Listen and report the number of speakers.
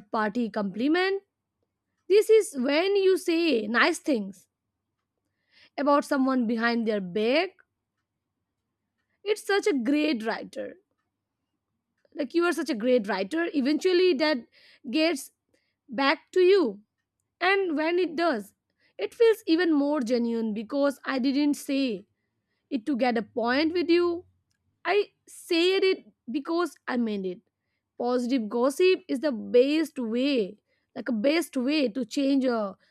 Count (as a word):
one